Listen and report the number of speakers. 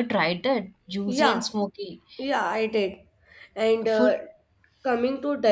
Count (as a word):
two